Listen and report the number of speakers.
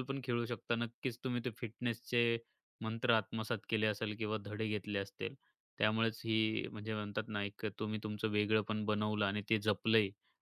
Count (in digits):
1